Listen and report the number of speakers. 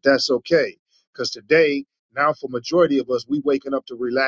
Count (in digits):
1